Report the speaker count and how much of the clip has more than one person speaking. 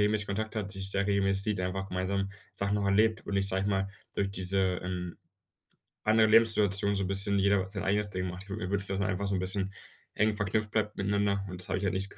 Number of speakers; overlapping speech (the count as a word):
one, no overlap